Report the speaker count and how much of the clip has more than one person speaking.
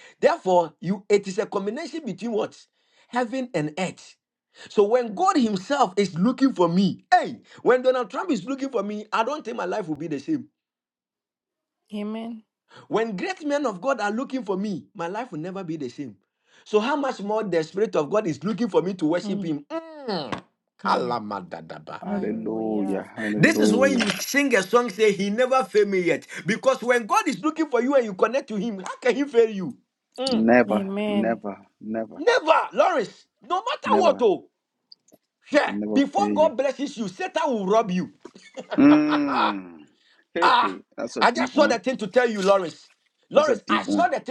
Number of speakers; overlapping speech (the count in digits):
3, about 13%